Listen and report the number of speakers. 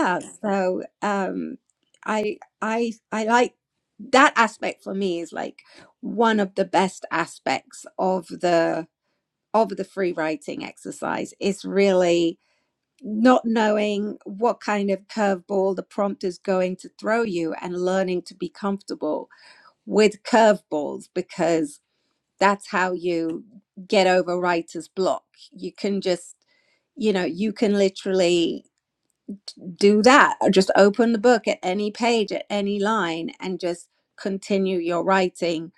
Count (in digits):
1